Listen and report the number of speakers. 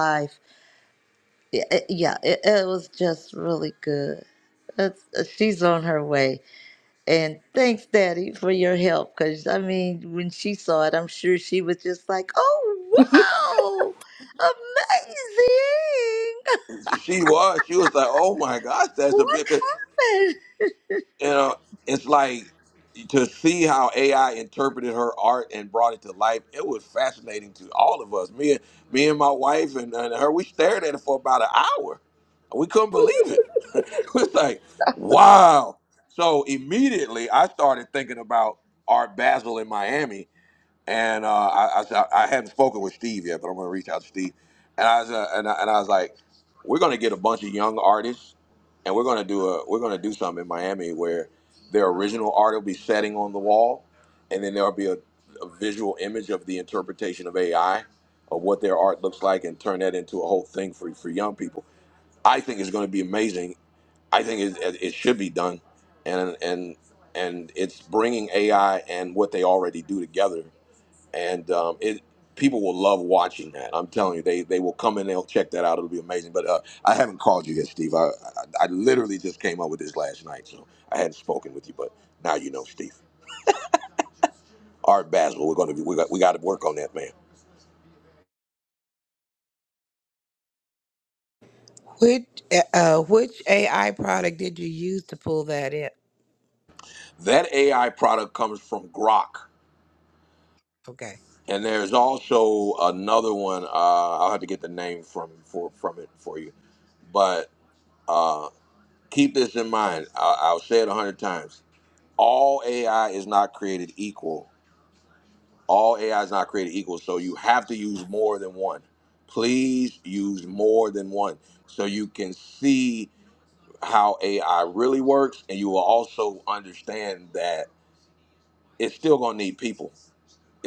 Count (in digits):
3